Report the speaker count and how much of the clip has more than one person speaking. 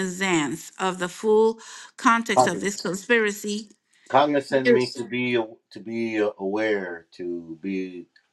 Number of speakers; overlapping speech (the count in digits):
2, about 8%